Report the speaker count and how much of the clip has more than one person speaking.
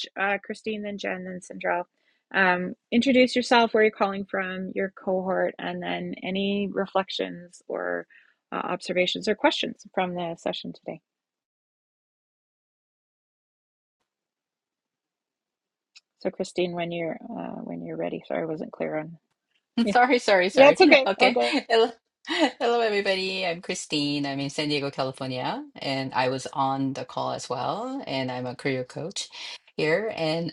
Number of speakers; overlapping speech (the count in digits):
2, about 3%